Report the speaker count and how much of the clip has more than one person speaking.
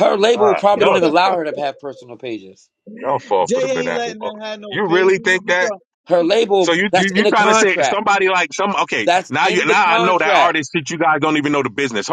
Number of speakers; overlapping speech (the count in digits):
3, about 44%